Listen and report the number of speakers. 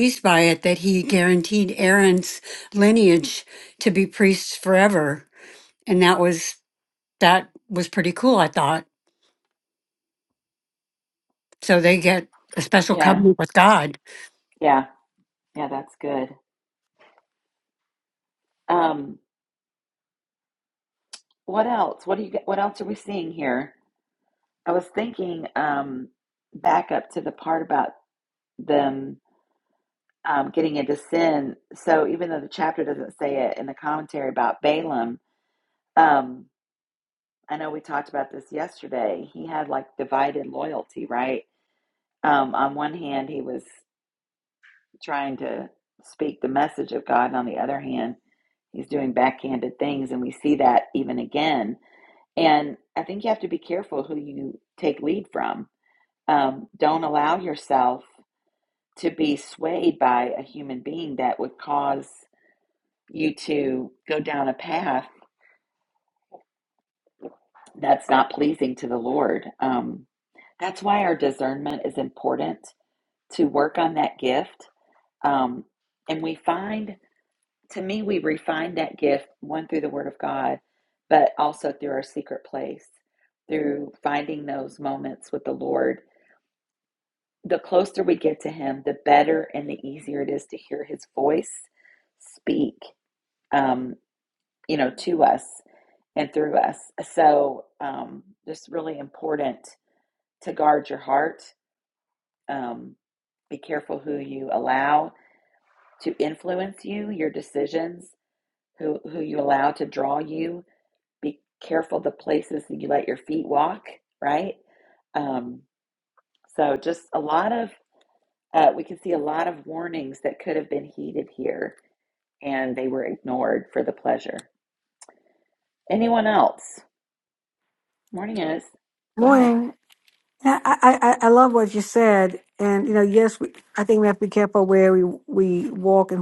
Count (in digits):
3